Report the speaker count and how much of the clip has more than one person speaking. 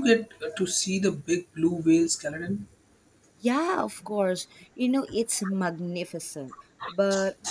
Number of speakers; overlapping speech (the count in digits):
2, no overlap